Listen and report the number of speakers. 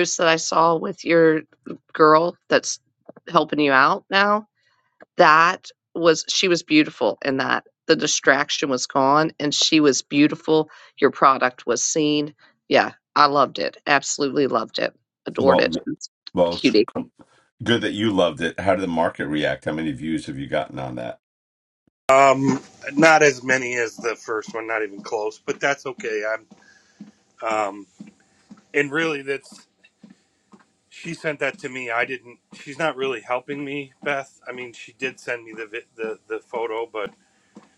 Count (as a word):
three